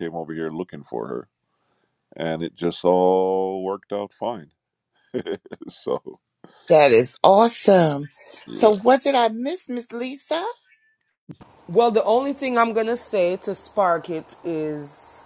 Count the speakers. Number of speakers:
3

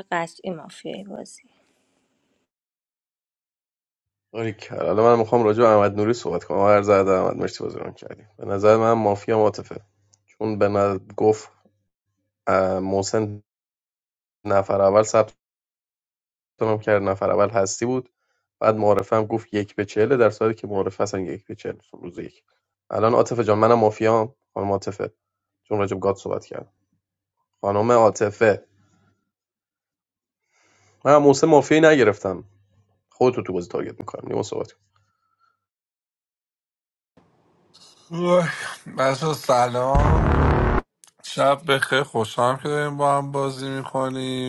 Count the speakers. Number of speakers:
3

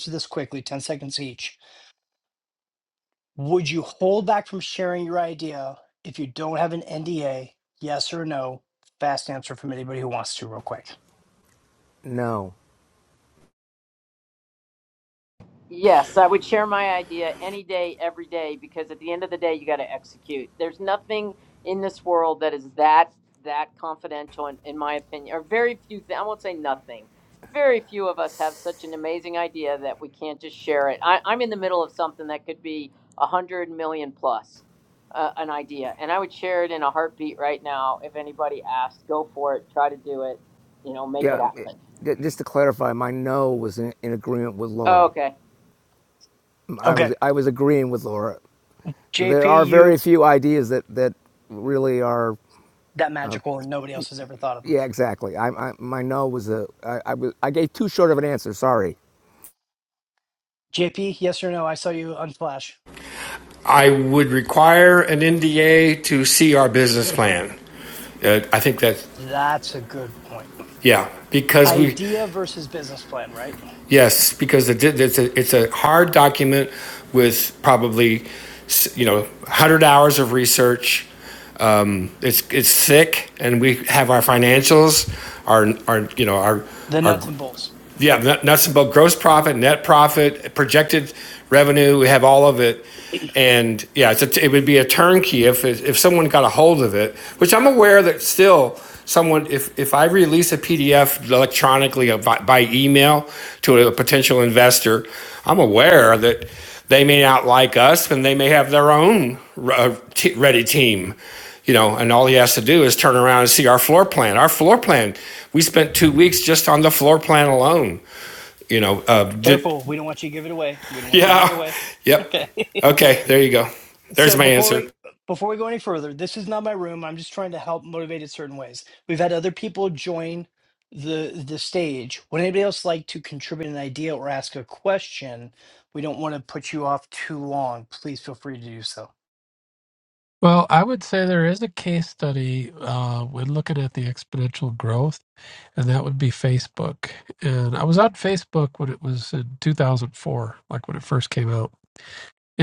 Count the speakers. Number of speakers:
5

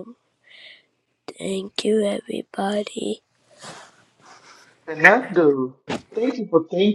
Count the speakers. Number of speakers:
2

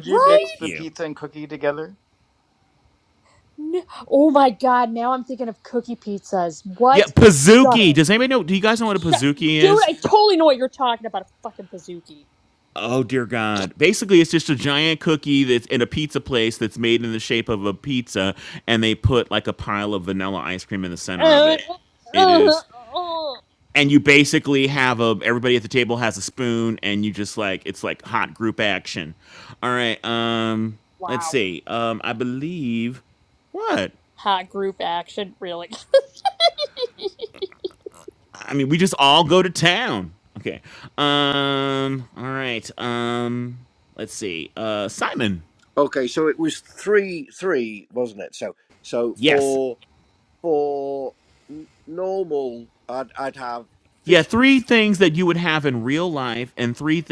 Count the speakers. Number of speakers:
4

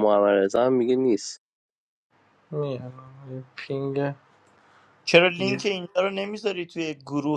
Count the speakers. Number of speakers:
3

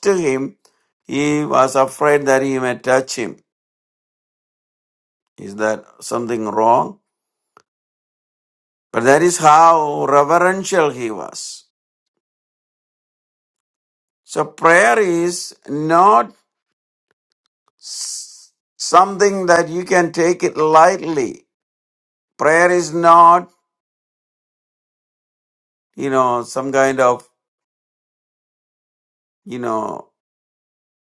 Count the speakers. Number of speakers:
1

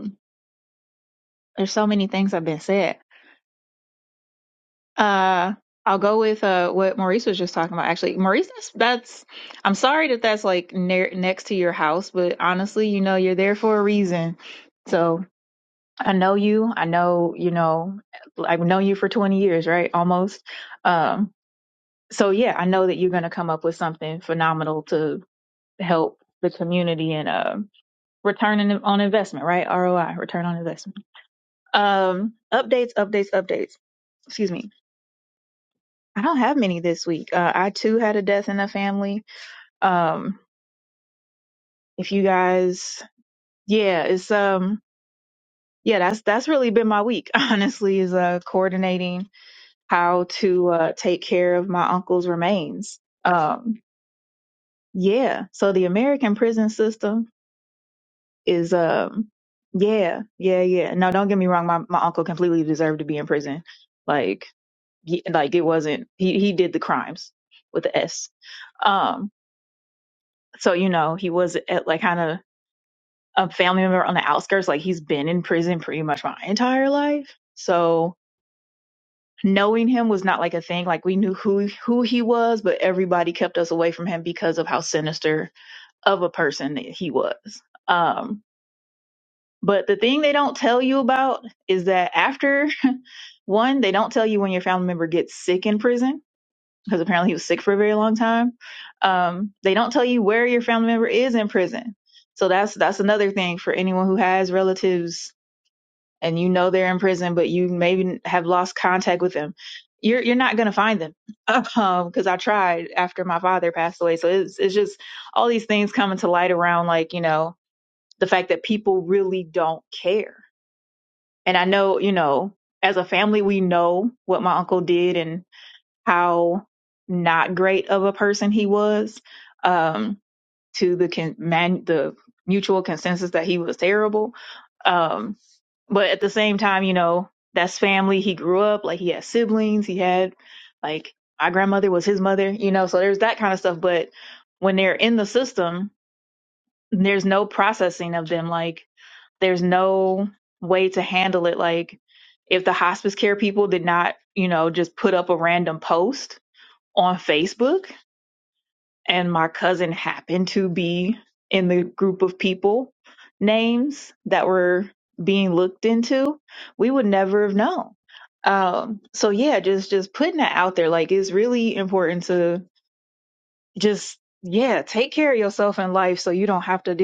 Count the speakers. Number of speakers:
1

